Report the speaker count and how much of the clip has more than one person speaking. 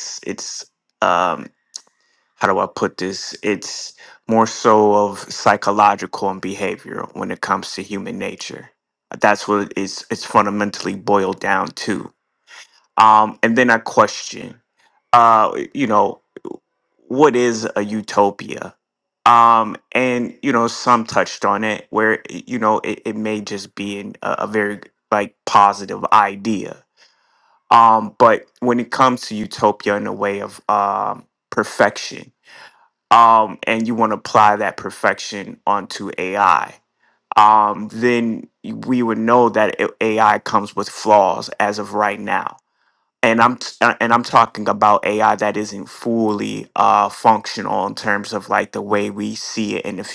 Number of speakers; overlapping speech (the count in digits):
1, no overlap